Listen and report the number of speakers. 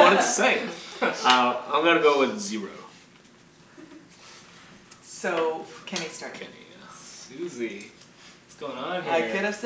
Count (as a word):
three